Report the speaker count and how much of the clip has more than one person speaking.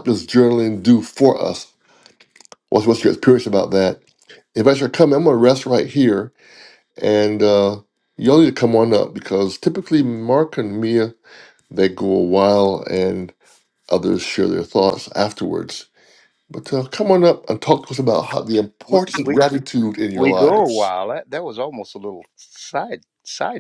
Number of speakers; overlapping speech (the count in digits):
2, about 5%